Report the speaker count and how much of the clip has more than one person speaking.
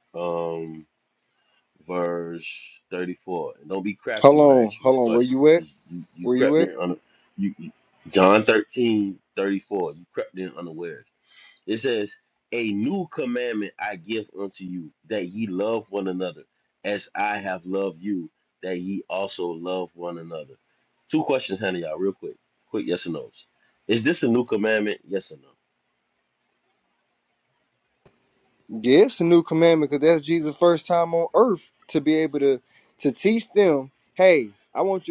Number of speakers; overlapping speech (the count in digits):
2, about 5%